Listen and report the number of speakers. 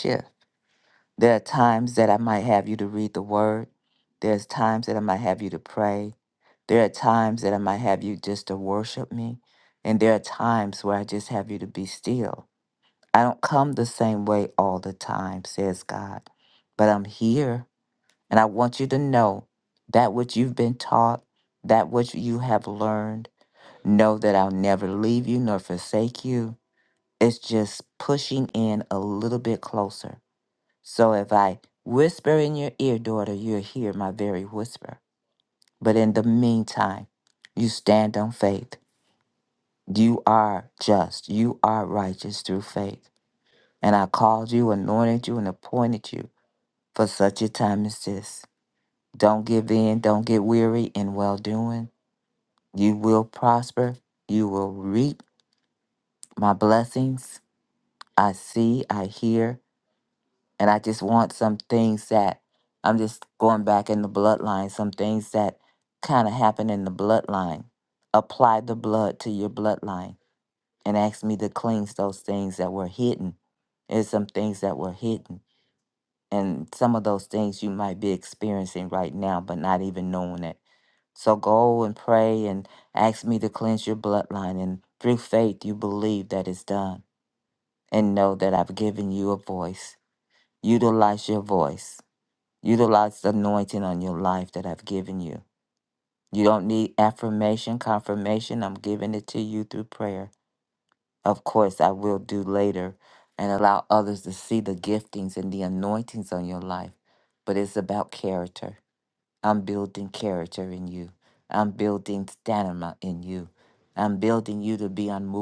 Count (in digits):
1